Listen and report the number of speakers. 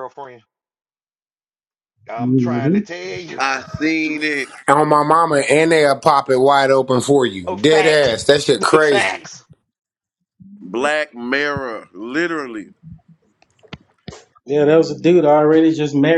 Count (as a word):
four